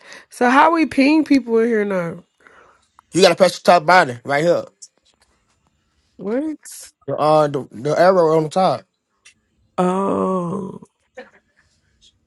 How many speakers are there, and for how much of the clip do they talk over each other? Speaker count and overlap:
2, no overlap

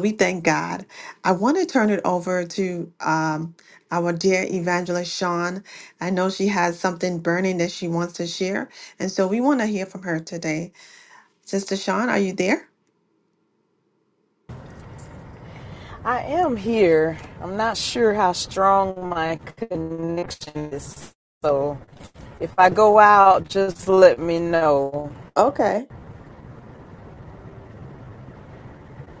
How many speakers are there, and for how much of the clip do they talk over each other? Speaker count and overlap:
2, no overlap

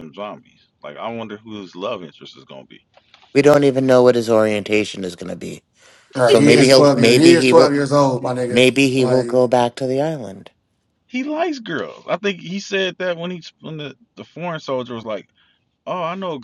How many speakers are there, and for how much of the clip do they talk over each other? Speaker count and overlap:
3, about 12%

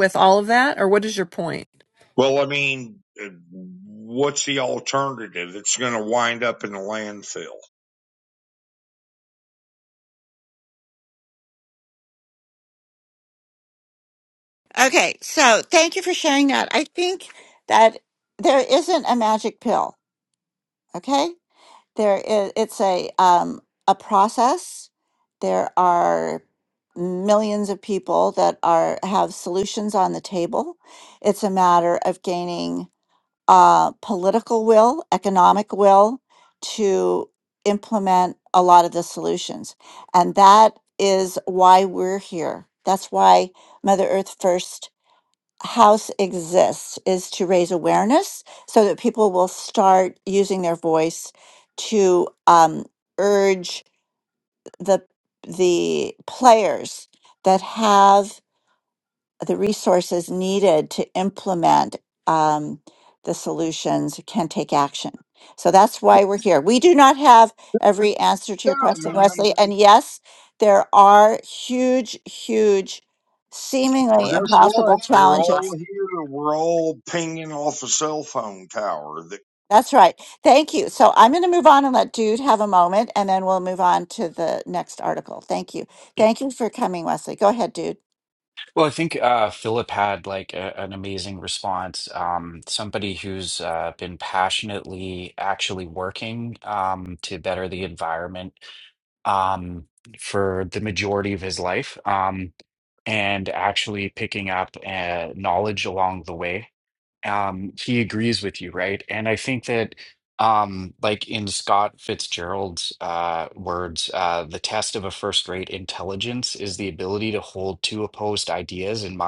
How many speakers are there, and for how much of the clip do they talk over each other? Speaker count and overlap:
4, about 2%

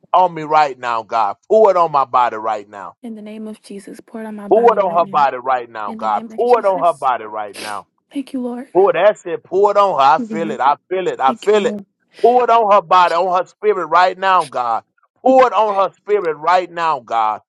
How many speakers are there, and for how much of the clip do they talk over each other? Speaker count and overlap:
2, about 17%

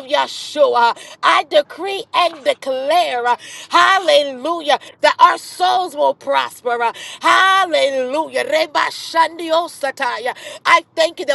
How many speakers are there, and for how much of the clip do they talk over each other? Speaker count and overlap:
1, no overlap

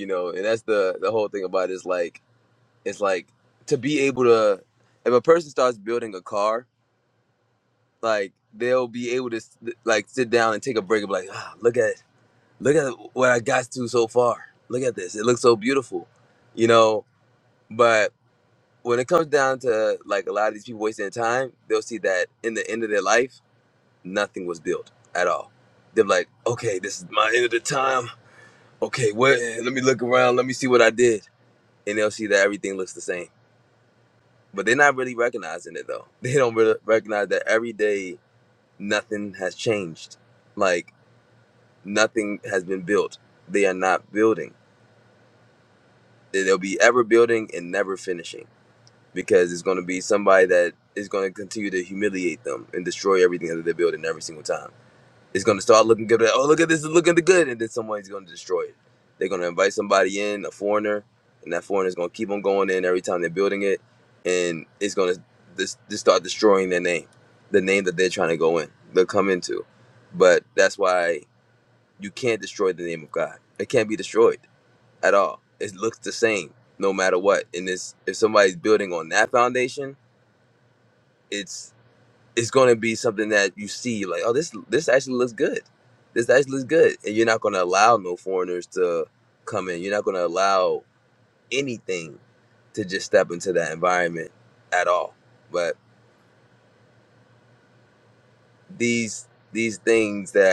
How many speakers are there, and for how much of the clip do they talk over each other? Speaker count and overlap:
1, no overlap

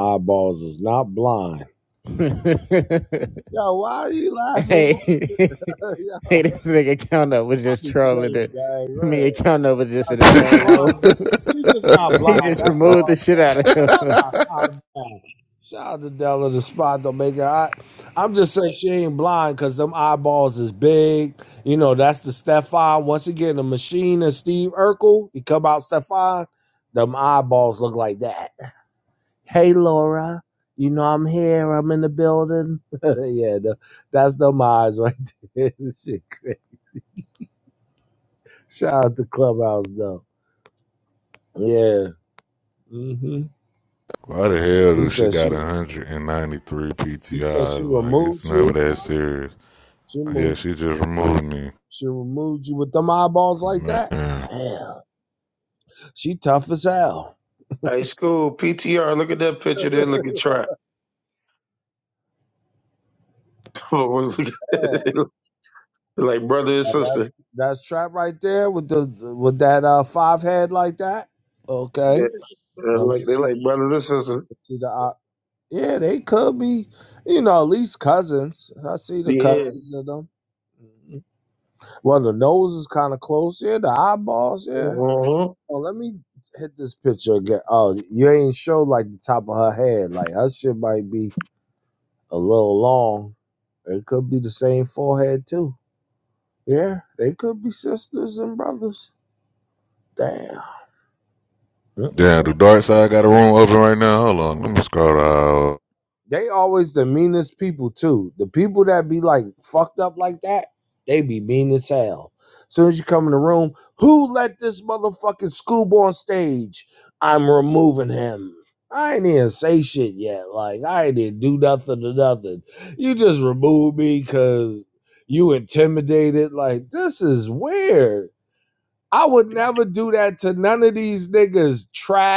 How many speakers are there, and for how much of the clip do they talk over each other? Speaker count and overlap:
4, about 6%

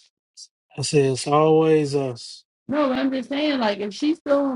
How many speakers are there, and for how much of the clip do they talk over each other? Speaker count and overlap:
2, no overlap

